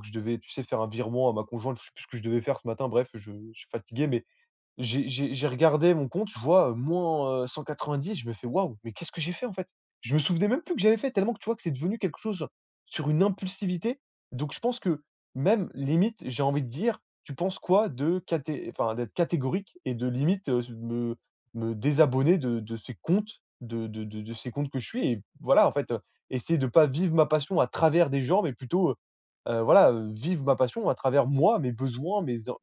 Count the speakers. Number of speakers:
one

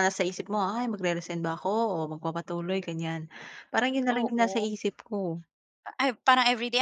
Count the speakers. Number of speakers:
two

